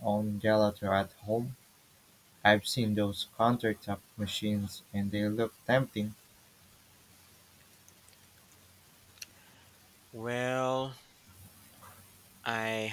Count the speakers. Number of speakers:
two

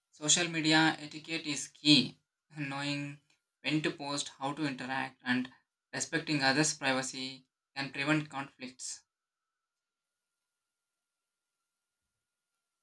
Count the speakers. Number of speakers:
one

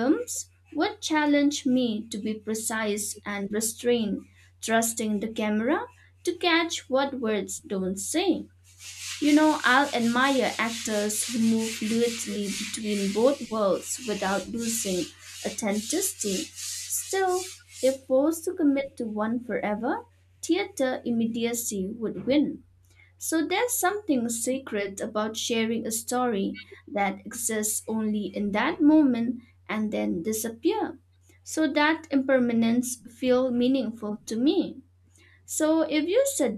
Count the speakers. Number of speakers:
one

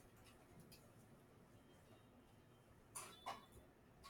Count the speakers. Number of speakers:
zero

